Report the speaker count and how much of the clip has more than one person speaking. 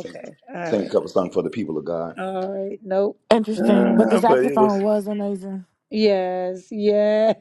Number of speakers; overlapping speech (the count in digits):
3, about 23%